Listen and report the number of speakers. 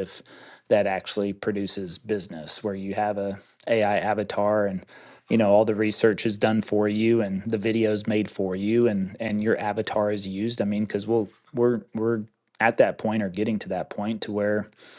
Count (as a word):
one